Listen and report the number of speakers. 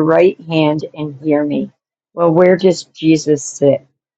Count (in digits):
1